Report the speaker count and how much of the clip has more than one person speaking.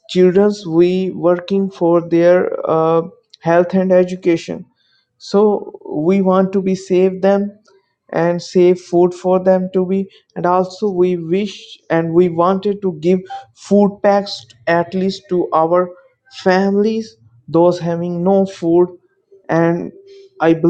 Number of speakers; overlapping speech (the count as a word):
one, no overlap